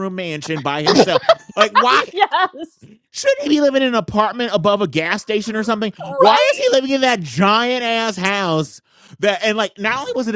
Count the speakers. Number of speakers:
2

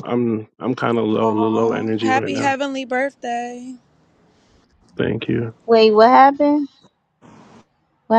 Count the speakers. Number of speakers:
3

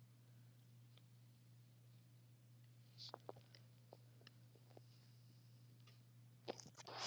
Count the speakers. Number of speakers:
0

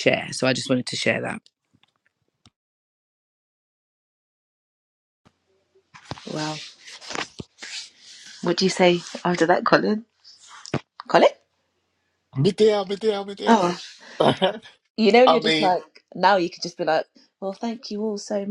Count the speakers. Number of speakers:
3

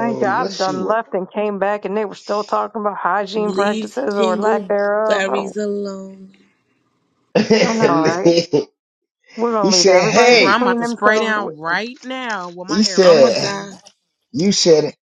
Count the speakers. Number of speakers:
4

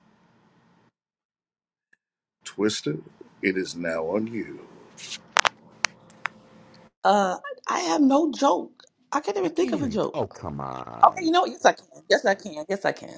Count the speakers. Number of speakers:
3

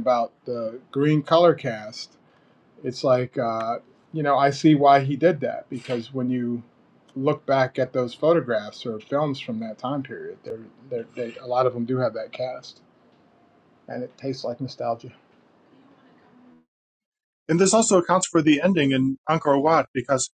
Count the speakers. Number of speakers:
2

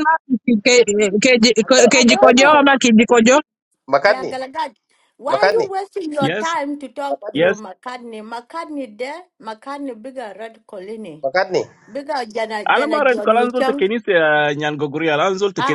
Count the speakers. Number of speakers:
4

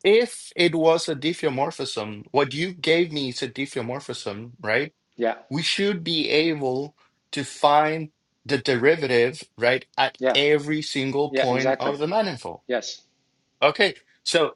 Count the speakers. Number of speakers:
2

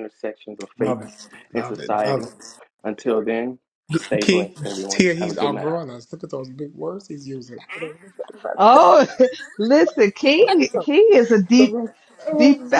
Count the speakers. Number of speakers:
3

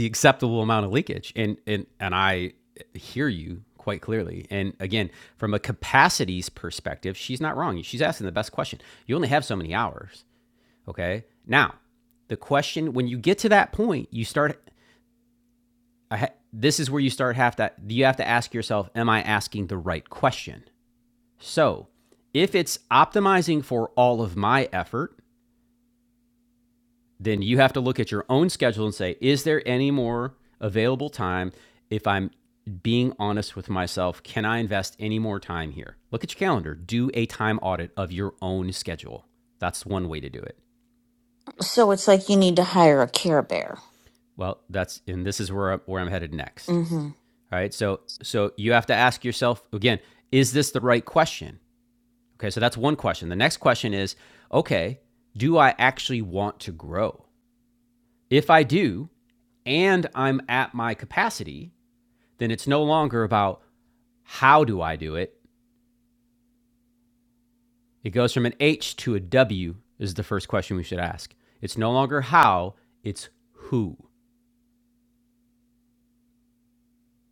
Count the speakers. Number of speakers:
2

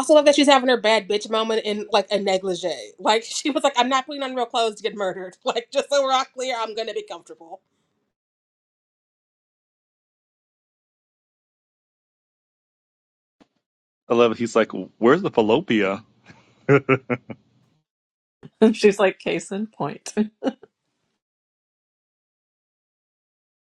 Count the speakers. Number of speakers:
3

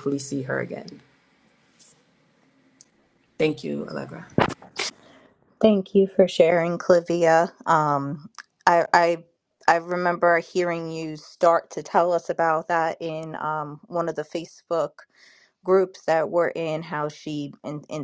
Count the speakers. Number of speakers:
2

